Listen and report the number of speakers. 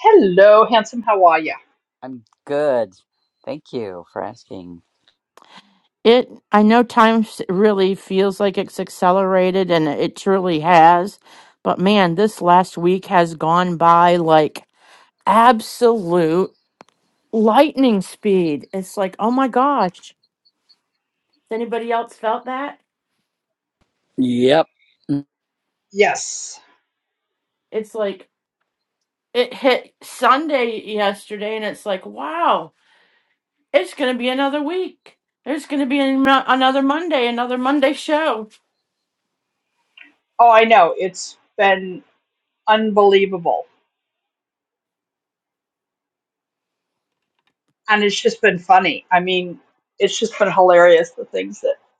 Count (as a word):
three